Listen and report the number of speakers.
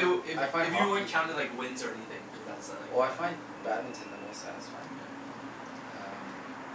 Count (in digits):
2